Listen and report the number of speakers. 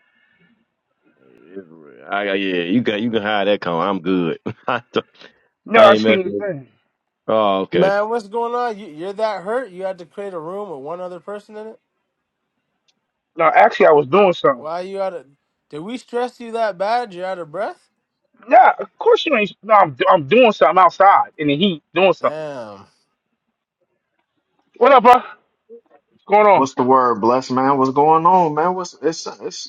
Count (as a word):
four